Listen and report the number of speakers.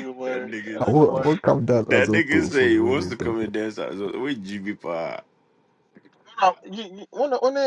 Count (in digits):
3